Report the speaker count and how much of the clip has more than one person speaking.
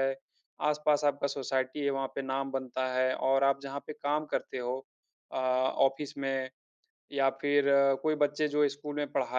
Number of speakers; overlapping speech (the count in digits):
1, no overlap